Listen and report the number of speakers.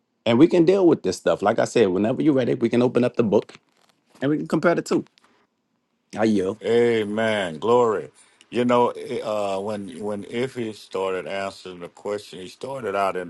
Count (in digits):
2